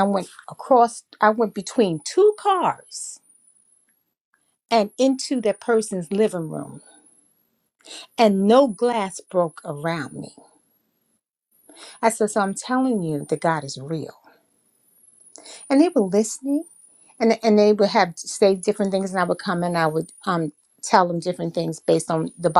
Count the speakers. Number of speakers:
1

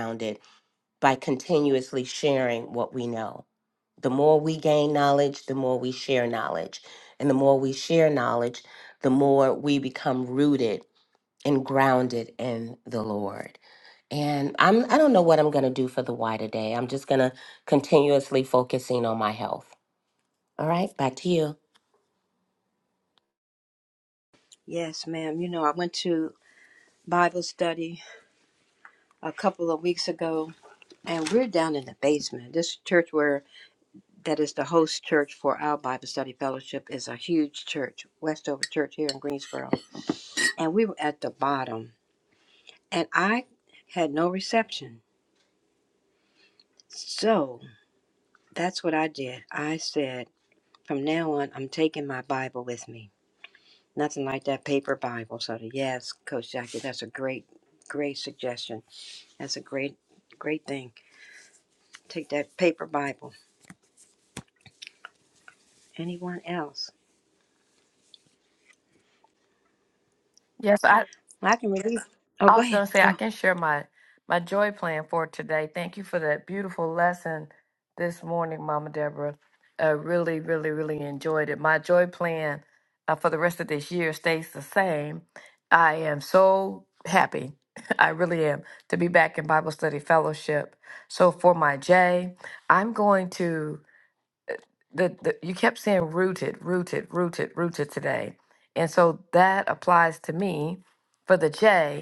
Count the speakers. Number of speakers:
3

